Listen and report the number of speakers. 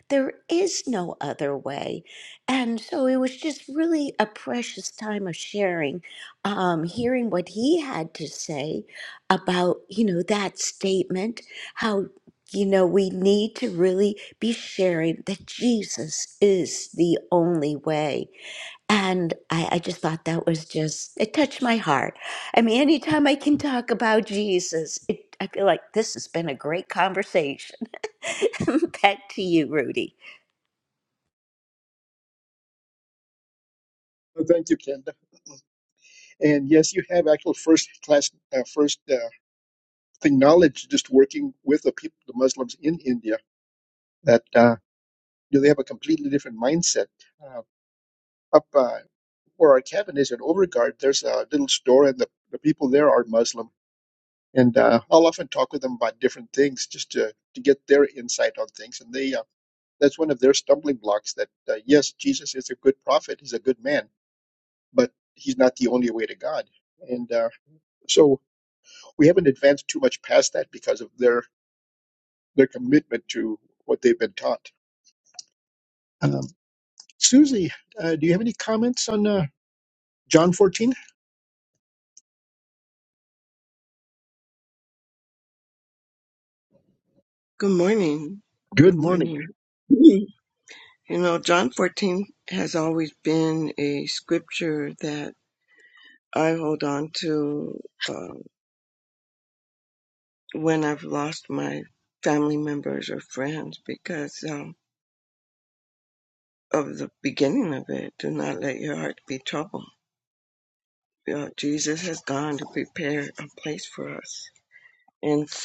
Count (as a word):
three